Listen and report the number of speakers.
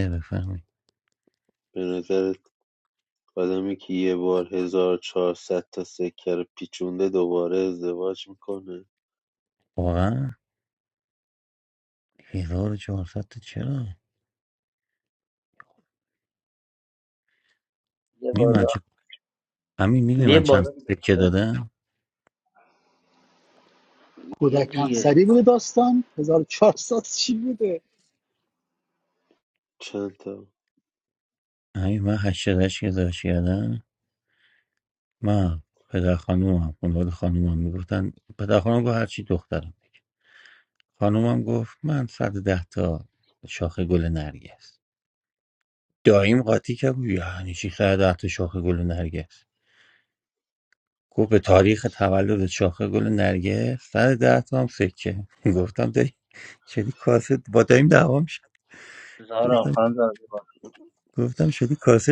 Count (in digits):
4